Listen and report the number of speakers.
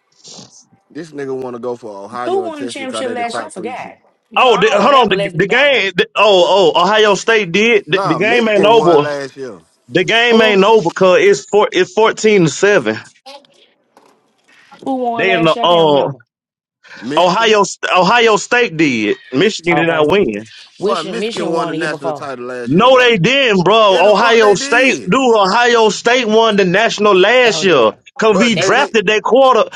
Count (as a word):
three